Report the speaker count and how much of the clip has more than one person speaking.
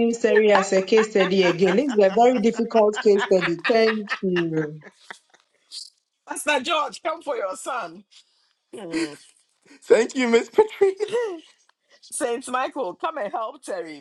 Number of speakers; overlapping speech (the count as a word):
three, no overlap